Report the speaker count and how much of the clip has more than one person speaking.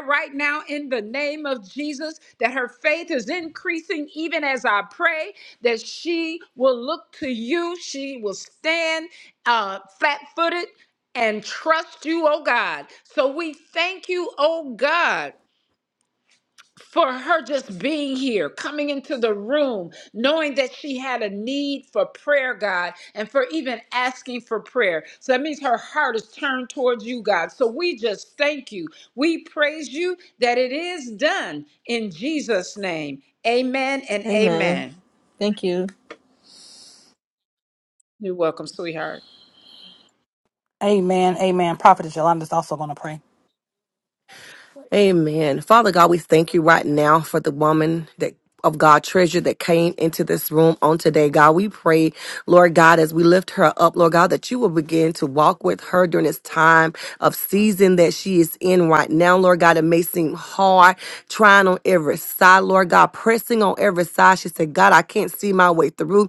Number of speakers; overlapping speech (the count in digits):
4, about 1%